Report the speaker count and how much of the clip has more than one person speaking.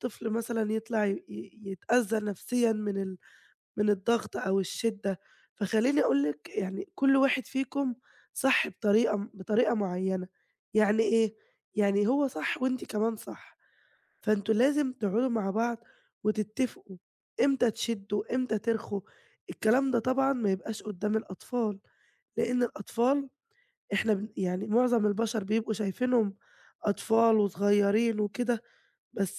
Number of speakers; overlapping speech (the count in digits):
1, no overlap